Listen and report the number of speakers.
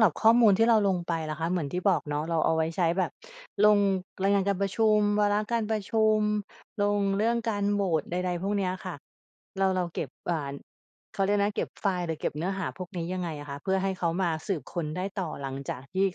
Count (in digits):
1